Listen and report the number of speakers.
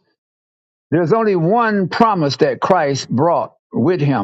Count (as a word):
one